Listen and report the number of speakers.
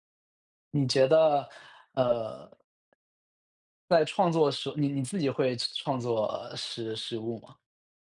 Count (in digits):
1